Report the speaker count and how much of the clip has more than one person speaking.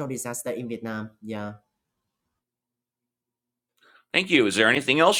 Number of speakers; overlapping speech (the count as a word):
two, no overlap